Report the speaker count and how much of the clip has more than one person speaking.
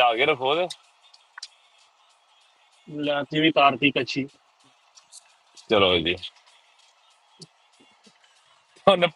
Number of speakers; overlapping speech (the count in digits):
2, no overlap